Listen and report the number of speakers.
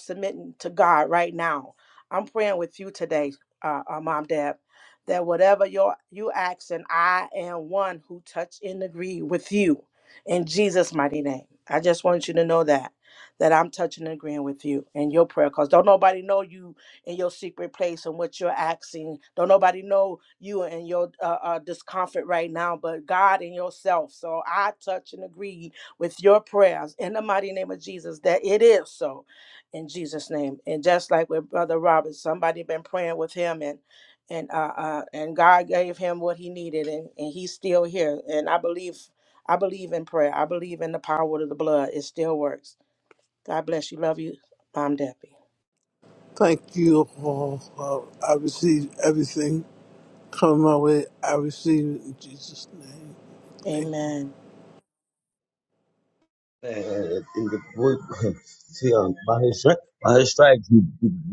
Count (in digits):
3